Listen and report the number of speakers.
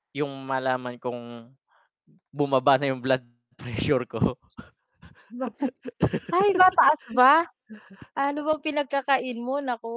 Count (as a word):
two